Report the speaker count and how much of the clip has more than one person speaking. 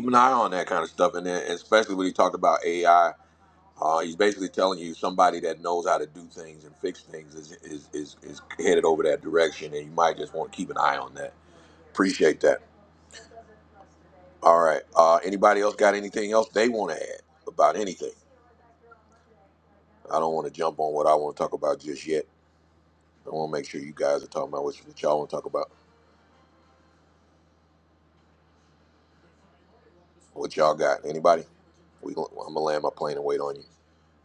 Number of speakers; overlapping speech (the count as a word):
one, no overlap